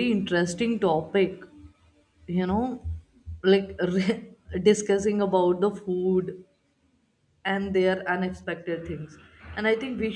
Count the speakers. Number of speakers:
1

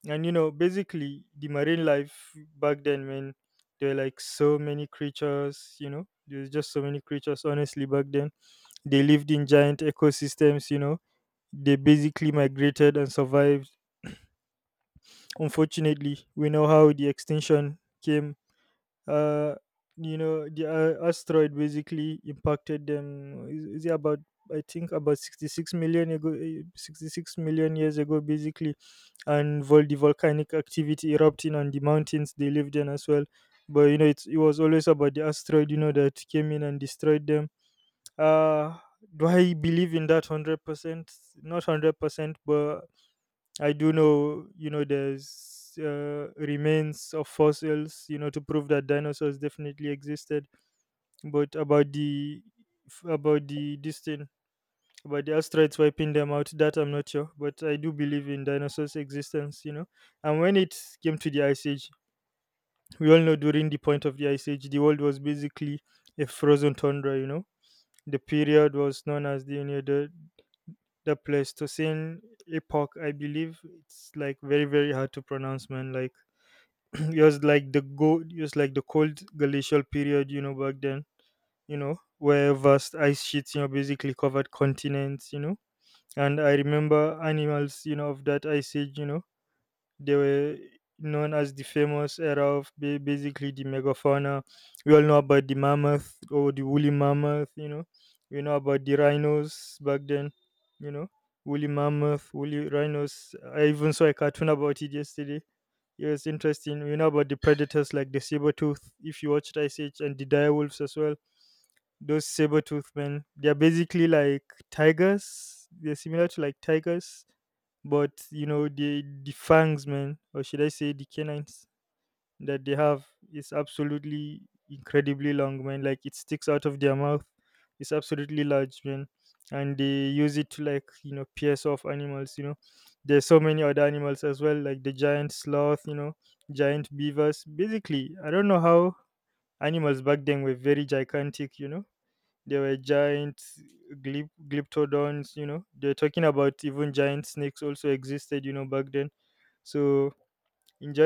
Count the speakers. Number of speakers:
1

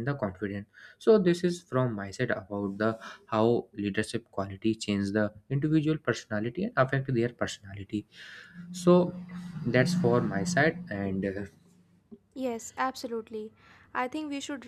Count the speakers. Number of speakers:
2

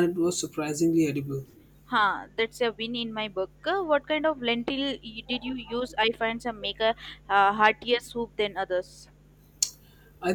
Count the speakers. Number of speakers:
2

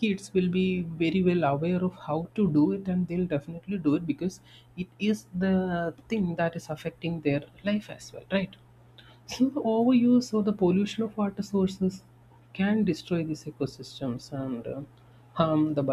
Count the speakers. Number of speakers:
1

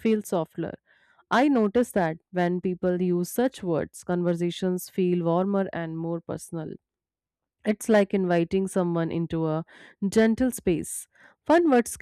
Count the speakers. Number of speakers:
1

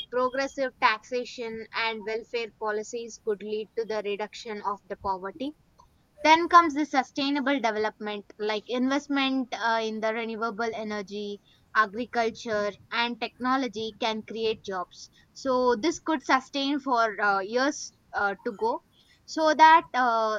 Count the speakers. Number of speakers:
1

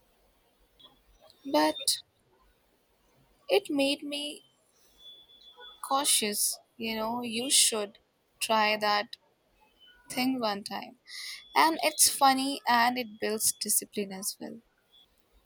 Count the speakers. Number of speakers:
1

